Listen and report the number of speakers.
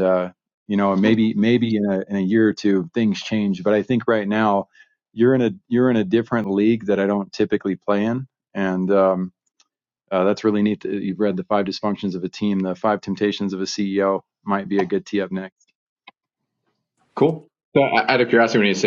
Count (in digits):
2